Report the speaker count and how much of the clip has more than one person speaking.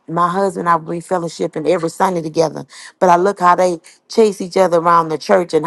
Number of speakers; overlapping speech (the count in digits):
1, no overlap